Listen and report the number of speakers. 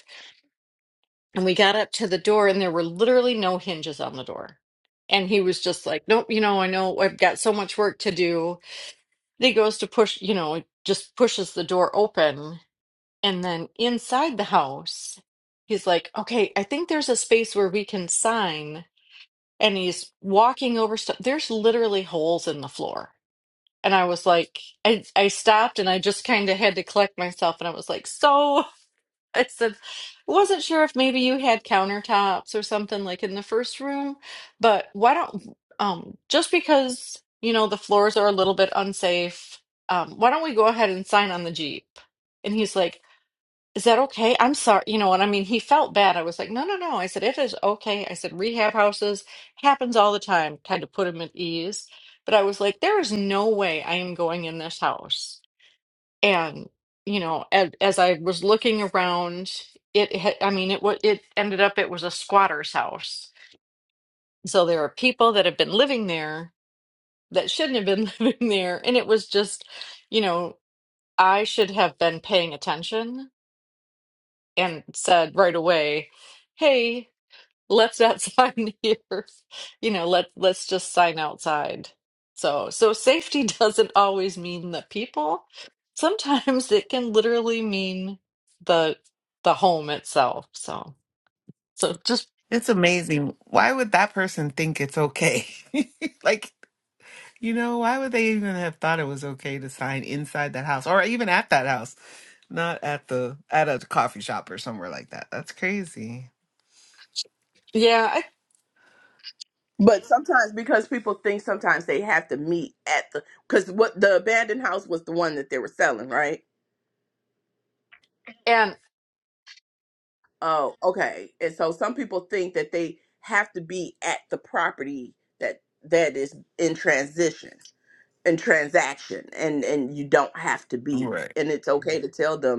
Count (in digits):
3